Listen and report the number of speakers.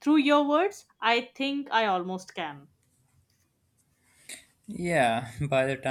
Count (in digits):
2